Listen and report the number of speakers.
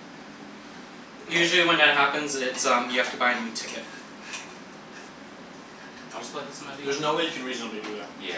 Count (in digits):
3